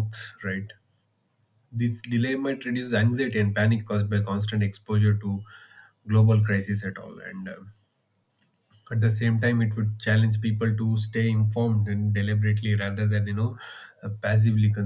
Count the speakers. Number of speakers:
1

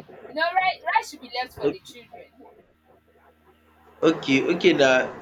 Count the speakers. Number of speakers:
2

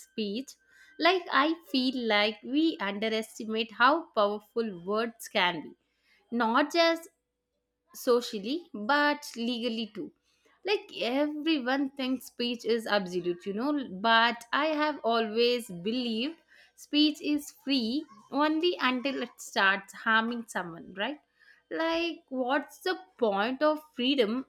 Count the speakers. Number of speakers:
1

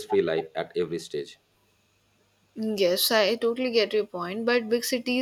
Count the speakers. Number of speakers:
2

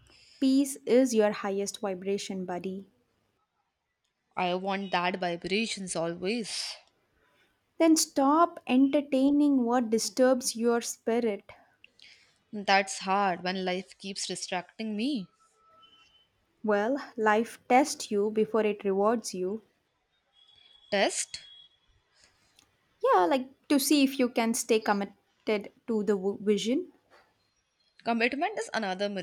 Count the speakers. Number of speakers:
2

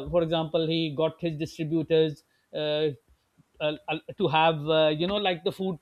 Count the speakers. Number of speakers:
1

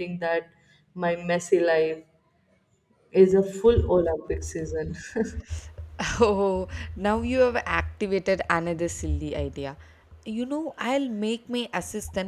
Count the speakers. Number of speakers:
2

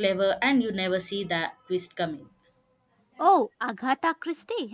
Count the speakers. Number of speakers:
2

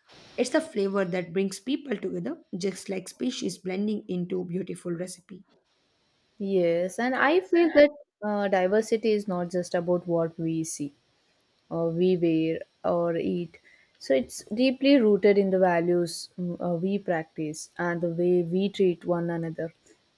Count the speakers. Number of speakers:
2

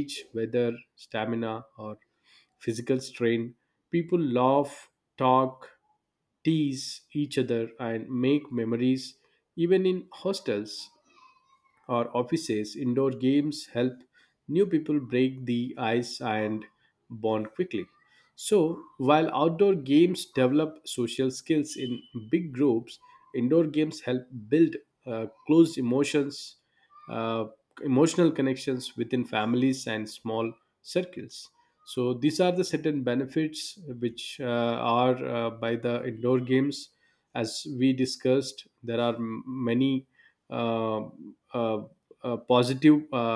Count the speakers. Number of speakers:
1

